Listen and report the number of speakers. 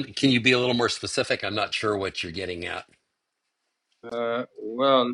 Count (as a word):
two